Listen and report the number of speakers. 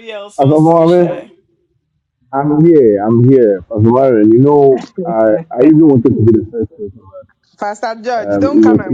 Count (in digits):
3